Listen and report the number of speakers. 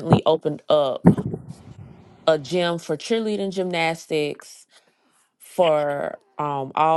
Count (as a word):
one